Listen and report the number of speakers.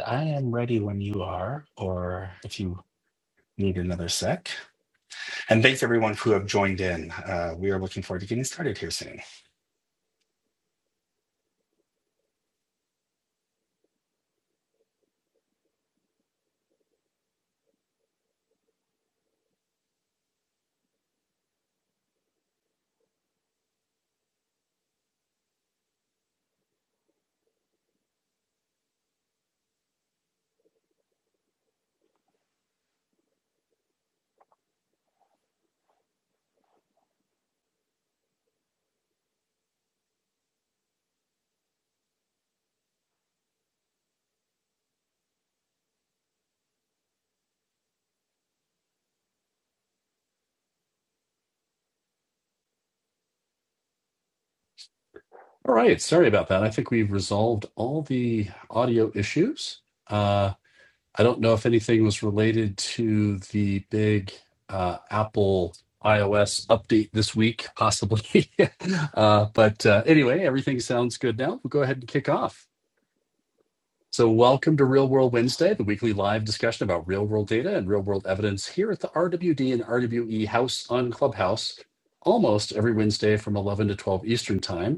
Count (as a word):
two